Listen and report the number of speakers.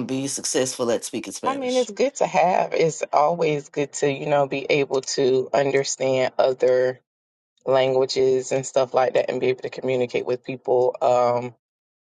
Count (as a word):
two